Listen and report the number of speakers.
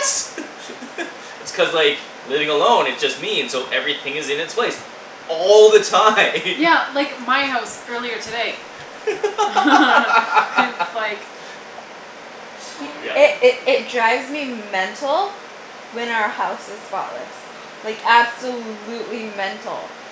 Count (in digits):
3